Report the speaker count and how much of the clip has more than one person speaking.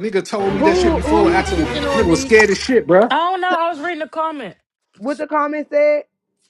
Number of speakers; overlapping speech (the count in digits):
3, about 27%